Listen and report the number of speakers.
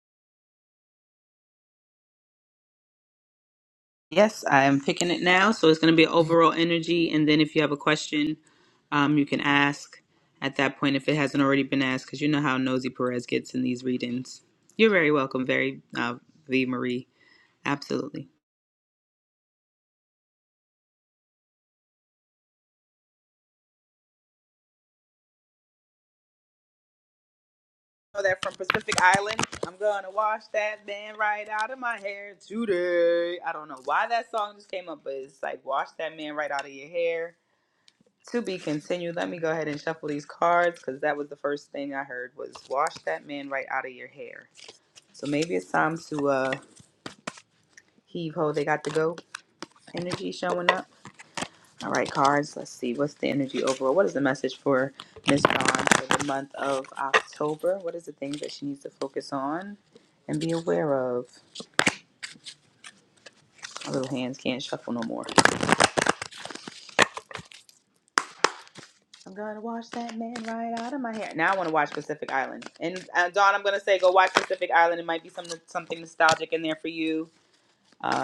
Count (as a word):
one